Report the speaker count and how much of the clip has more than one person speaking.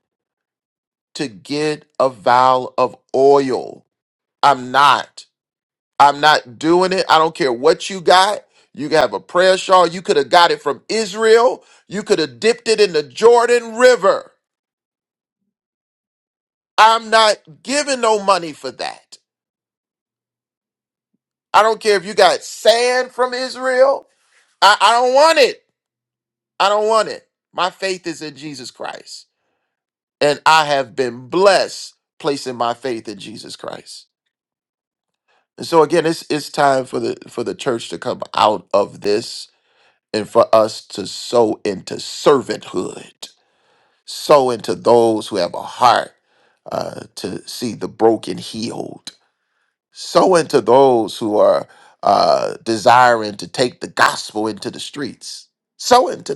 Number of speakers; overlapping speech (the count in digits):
1, no overlap